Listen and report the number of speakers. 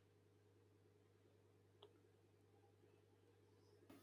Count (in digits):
0